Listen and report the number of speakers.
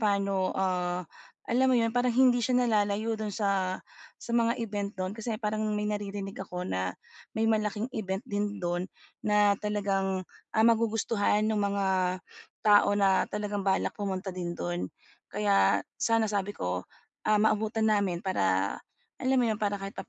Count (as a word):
one